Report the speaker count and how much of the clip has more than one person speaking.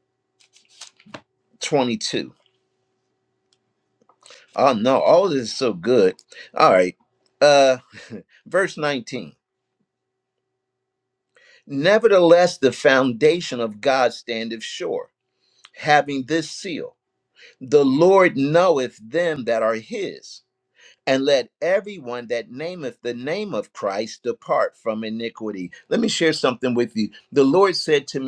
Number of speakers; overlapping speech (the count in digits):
1, no overlap